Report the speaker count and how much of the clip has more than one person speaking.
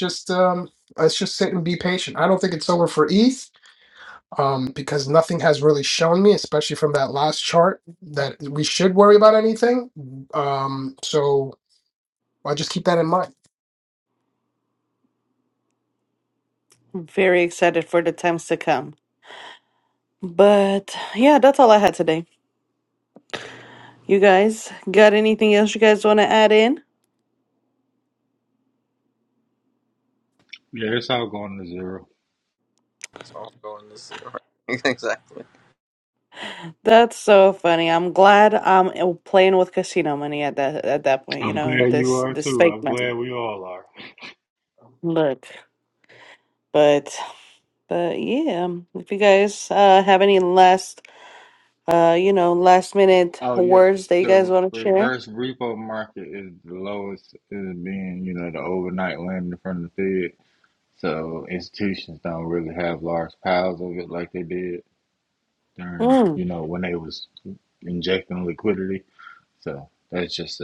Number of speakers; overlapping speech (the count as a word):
four, about 5%